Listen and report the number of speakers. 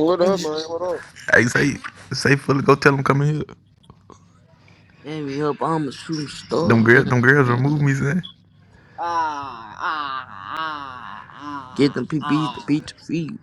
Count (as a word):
four